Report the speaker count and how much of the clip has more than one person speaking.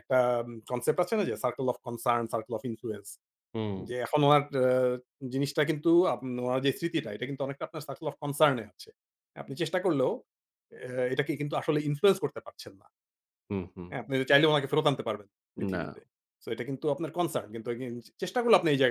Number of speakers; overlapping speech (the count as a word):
two, about 2%